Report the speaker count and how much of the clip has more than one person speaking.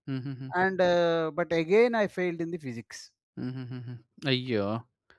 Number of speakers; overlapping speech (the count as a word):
two, no overlap